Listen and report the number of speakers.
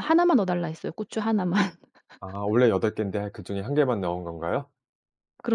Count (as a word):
two